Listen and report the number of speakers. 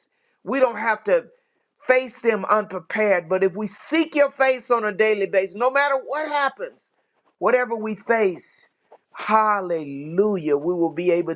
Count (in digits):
1